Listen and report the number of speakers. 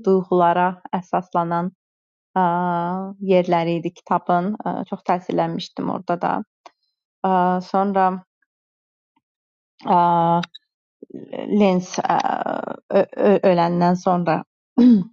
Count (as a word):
one